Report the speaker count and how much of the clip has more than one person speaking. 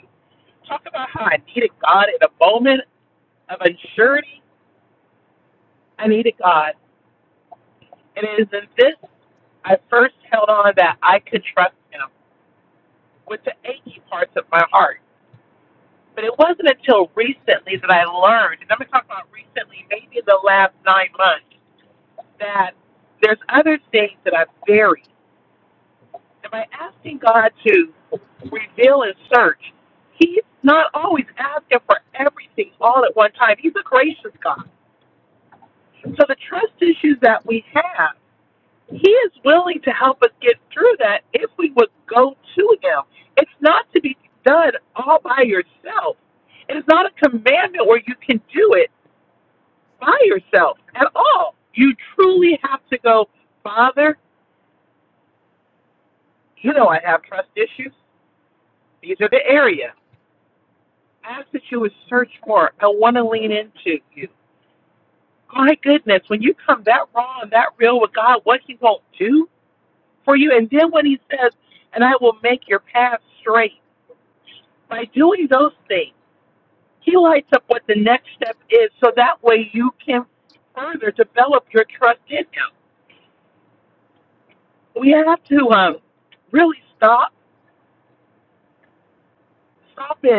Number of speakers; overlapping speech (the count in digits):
1, no overlap